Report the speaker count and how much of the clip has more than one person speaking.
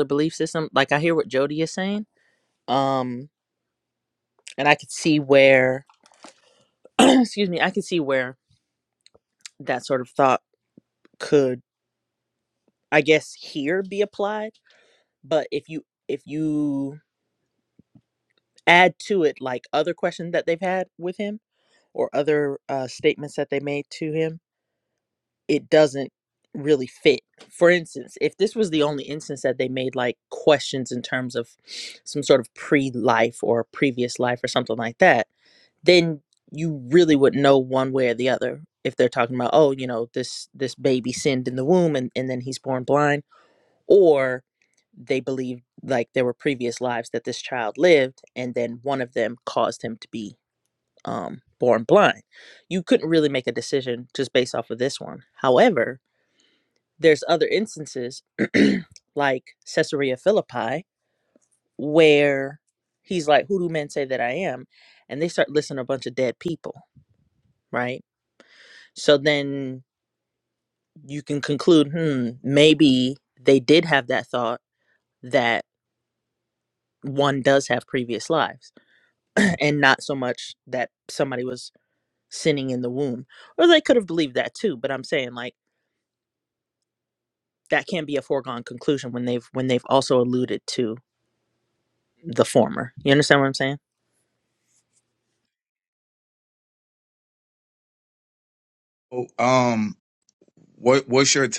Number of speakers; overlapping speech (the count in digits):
2, no overlap